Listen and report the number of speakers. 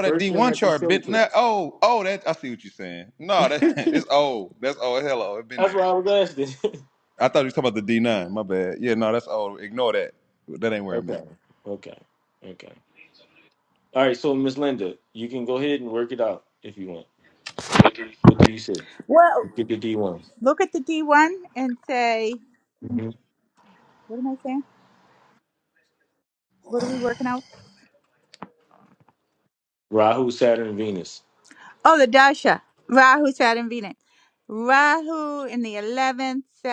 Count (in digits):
3